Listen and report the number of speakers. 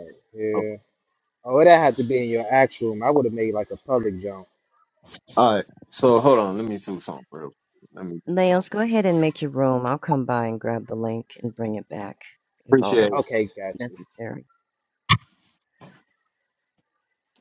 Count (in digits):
3